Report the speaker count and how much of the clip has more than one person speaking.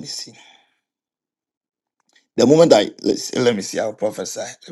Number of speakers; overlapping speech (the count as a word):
one, no overlap